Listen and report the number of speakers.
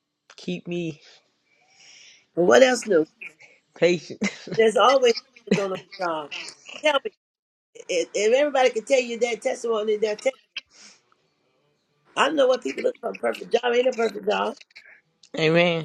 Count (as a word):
two